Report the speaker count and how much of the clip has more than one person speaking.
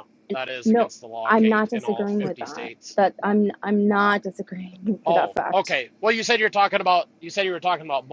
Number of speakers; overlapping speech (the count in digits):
2, about 27%